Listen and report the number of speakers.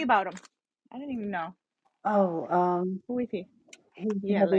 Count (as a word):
two